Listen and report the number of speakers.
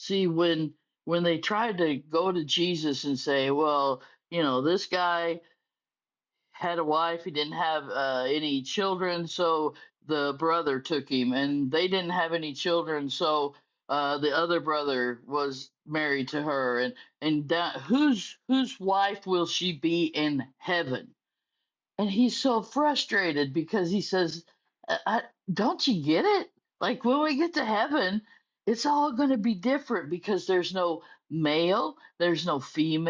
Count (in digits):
1